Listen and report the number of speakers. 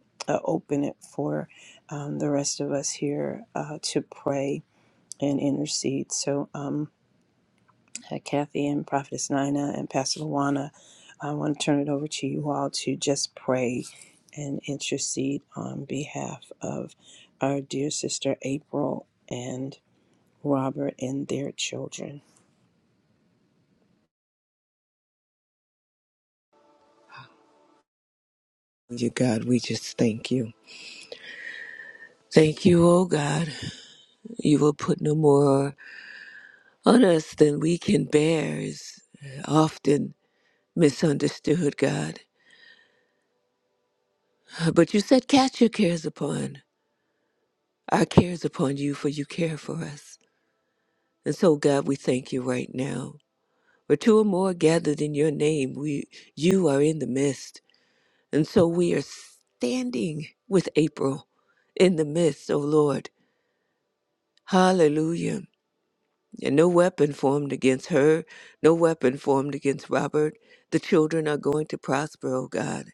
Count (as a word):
two